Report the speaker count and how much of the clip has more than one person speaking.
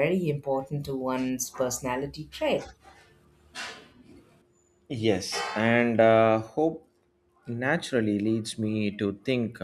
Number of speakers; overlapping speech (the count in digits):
2, no overlap